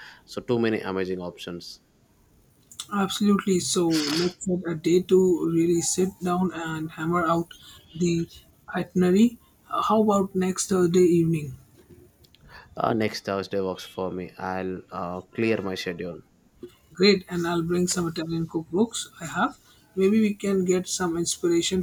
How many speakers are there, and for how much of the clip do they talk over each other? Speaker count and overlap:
2, no overlap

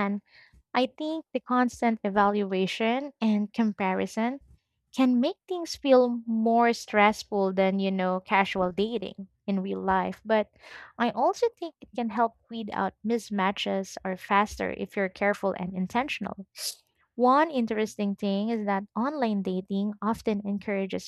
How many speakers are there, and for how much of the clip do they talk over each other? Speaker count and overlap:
1, no overlap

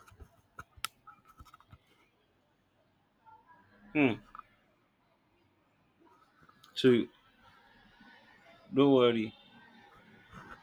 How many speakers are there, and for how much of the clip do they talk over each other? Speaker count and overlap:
1, no overlap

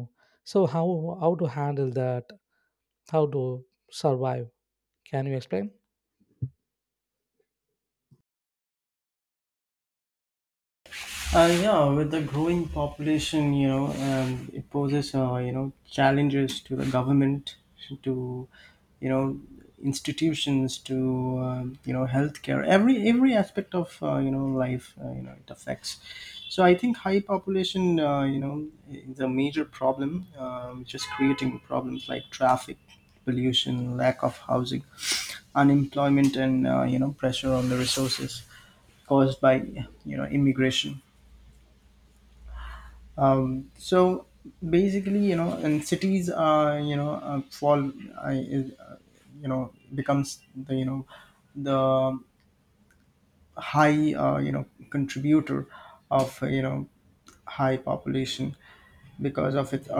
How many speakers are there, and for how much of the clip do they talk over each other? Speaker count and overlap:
2, no overlap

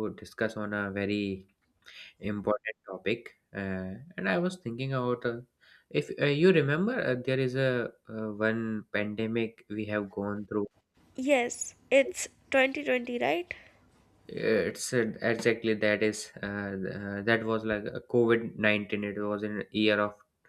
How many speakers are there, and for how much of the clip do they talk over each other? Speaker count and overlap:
2, under 1%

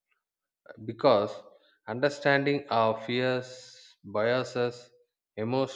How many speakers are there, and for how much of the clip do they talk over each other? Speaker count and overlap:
1, no overlap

